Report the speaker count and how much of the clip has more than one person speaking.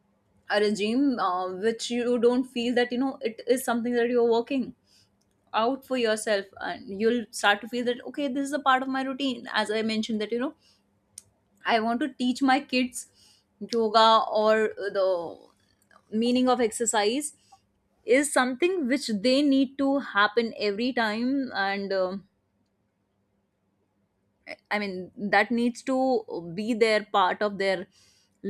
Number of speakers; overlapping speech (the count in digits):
1, no overlap